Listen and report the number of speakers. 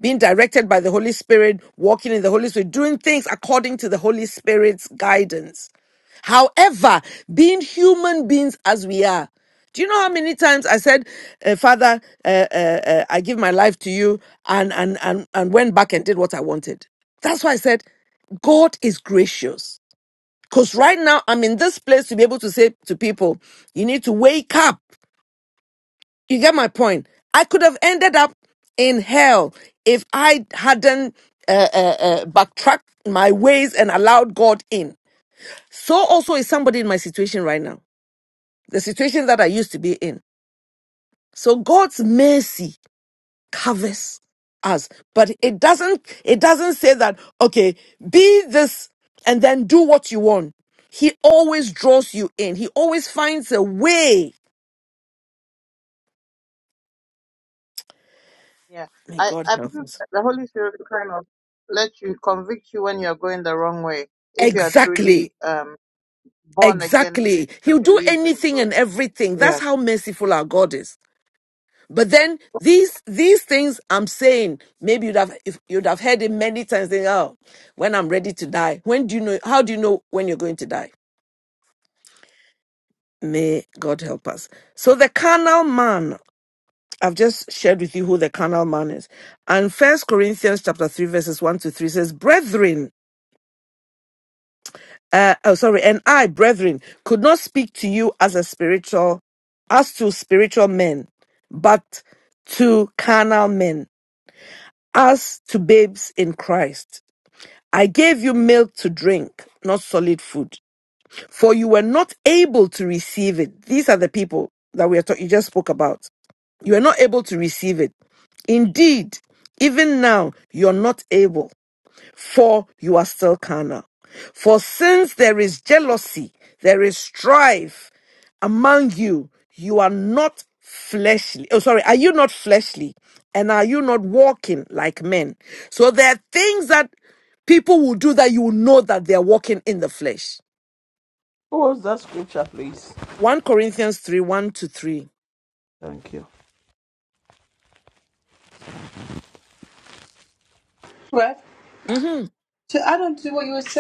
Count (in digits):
4